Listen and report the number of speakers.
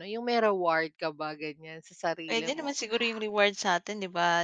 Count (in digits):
2